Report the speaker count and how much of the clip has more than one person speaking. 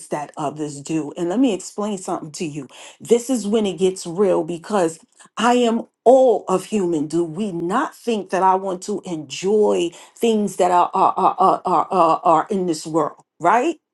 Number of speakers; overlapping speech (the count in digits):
1, no overlap